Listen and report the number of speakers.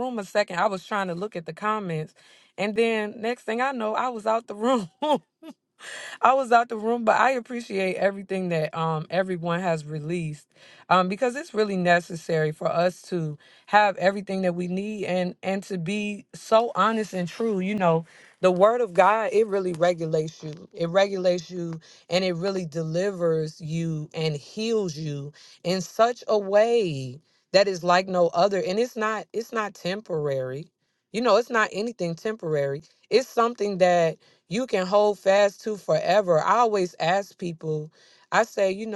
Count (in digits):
1